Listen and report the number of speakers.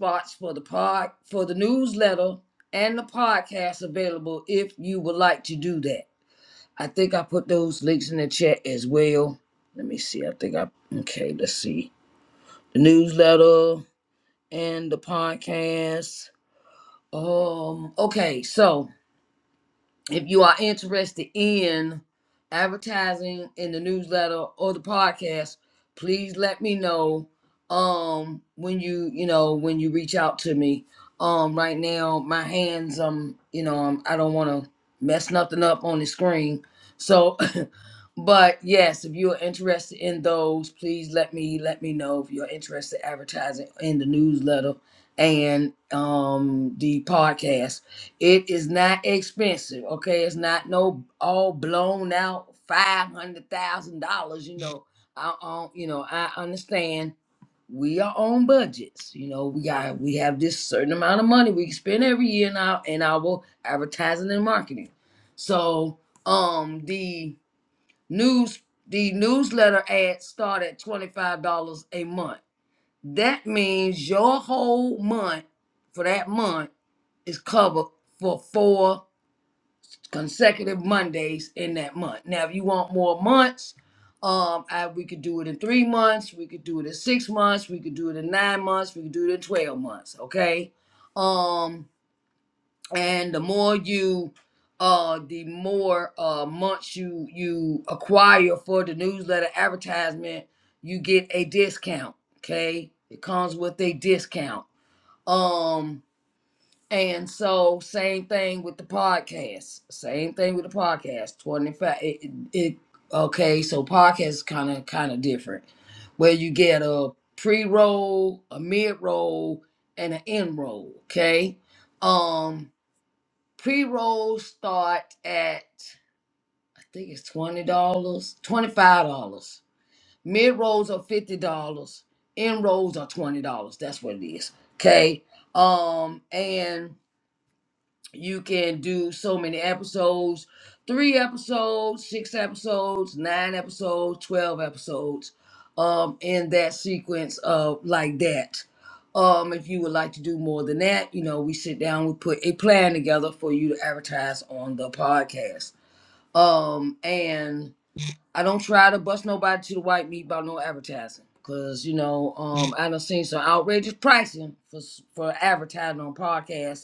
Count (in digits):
1